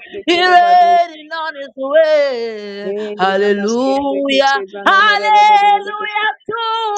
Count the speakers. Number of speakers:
2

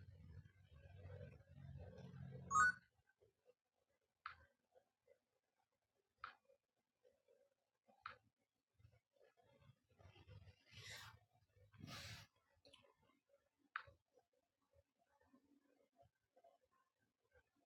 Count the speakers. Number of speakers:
0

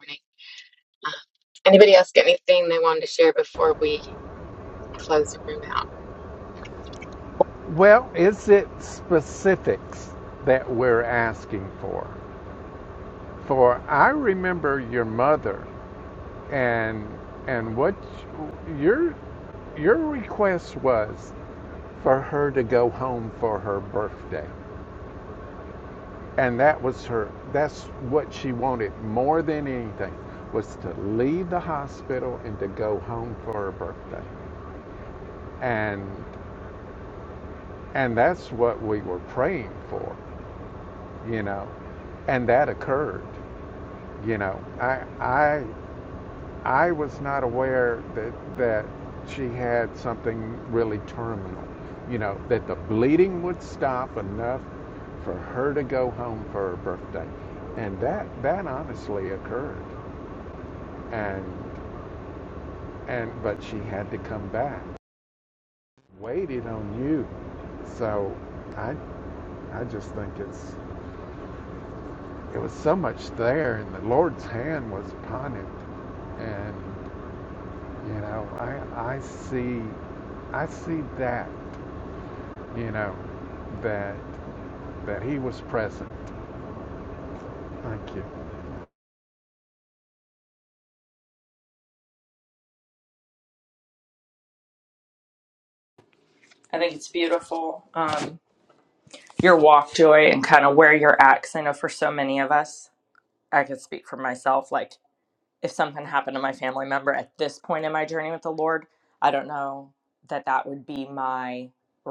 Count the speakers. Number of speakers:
3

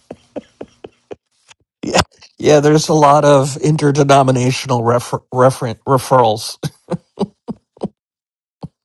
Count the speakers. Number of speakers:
1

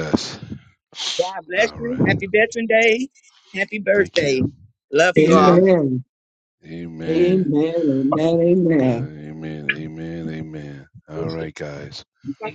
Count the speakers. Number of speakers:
3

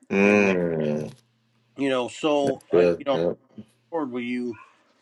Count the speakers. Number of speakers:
2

